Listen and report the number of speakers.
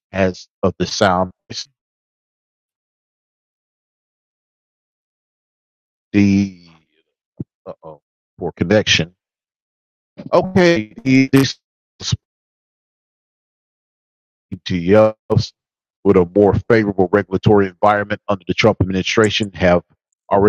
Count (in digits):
1